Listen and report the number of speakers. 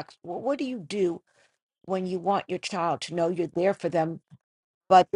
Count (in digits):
1